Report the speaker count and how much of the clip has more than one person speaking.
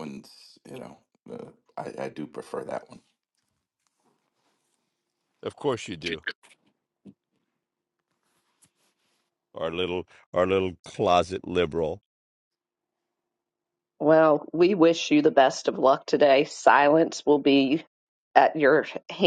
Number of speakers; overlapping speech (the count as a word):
three, no overlap